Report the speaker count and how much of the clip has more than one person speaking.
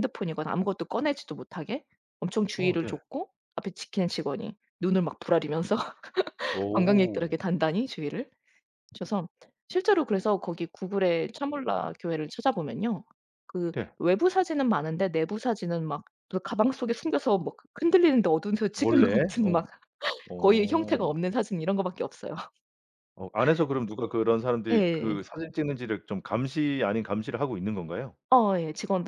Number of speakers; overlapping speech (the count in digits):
2, about 11%